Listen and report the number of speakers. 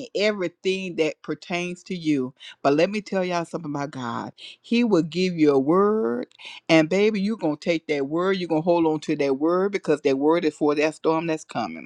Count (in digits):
1